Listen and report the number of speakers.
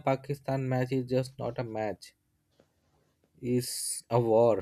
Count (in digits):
1